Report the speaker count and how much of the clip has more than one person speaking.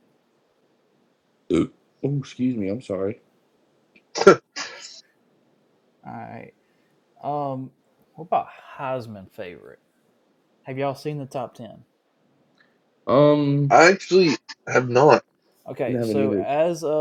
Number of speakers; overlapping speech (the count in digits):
3, about 4%